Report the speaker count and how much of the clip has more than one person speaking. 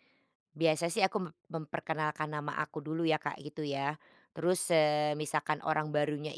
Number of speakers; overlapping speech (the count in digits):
1, no overlap